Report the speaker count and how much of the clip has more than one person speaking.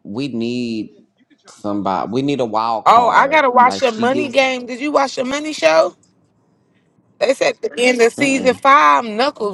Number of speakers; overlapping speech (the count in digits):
2, about 20%